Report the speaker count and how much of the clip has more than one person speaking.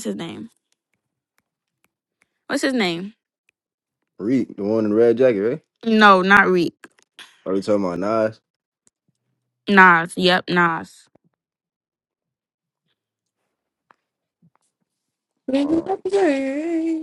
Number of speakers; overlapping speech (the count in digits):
3, about 1%